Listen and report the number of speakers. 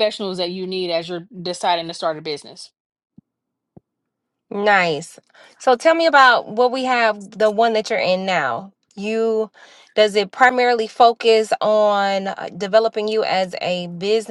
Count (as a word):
two